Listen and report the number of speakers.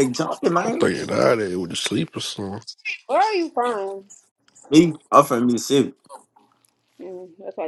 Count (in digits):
3